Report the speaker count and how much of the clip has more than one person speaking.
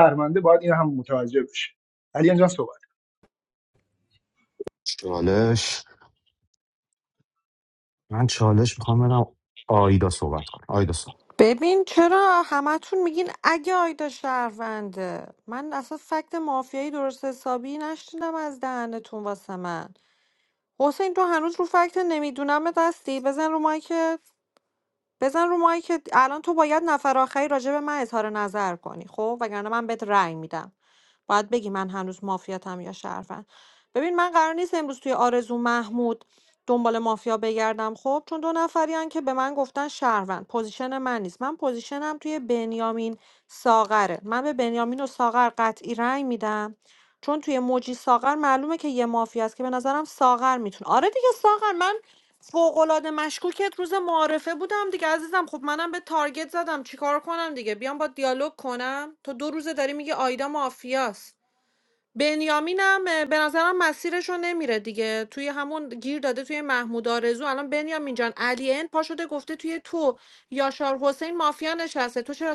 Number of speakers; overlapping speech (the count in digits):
3, no overlap